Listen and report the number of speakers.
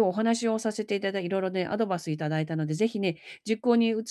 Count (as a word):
one